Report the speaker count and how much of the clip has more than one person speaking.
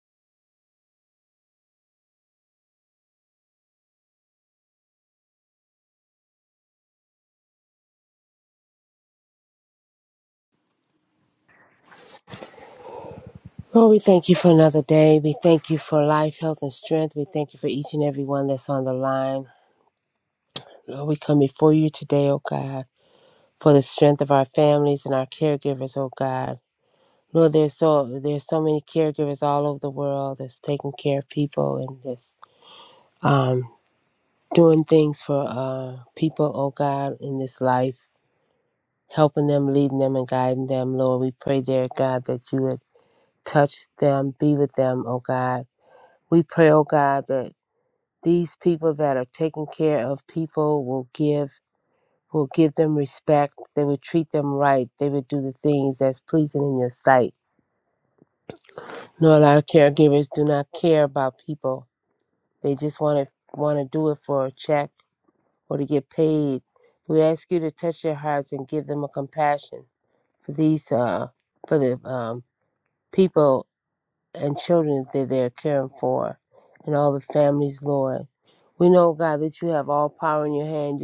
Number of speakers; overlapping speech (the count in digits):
1, no overlap